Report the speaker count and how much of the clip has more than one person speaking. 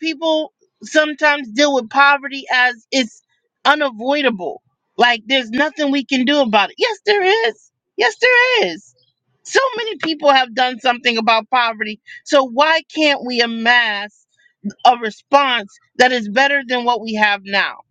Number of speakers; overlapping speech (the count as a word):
one, no overlap